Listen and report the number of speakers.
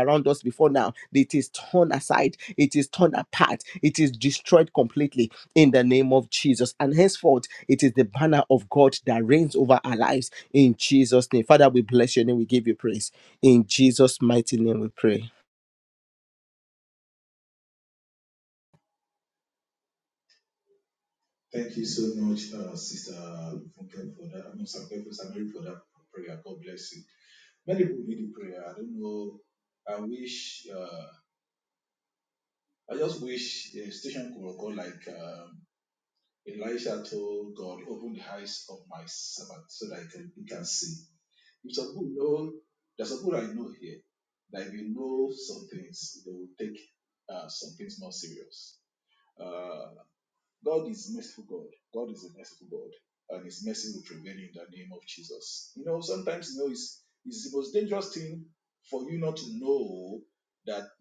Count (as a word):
two